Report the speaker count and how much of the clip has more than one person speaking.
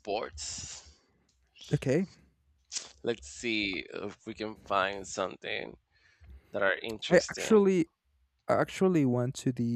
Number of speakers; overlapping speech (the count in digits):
2, about 5%